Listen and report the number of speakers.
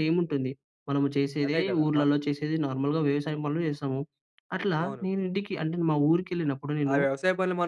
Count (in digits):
2